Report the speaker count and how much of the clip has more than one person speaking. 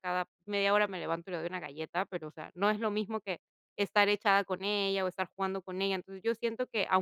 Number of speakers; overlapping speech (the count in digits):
1, no overlap